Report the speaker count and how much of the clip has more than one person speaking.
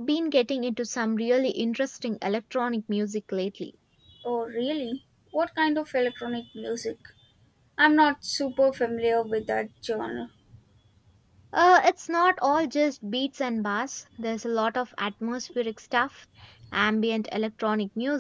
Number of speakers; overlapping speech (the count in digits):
2, no overlap